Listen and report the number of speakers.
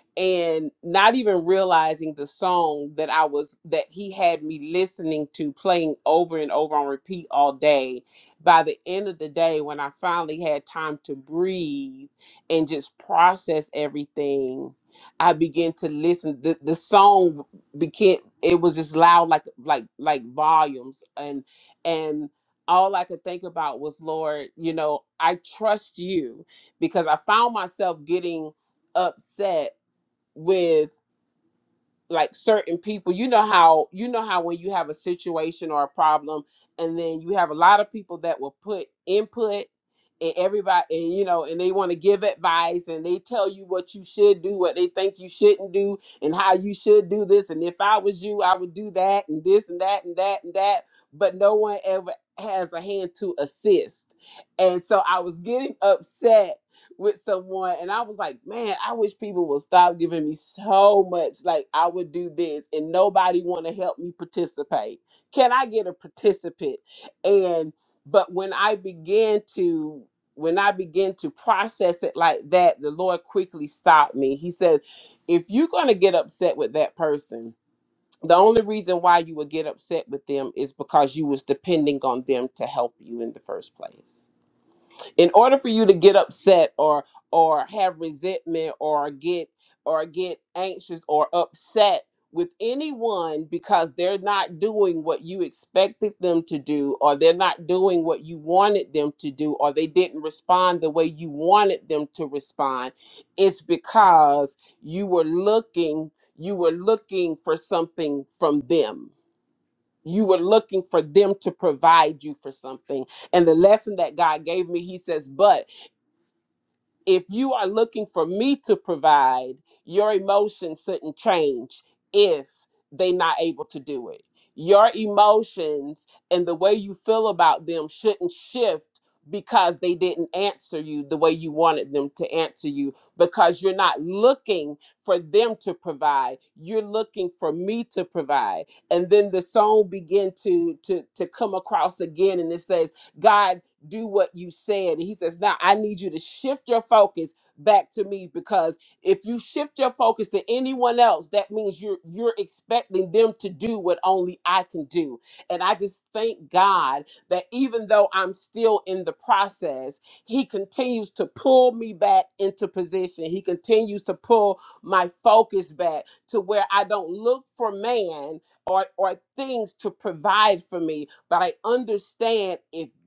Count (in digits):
1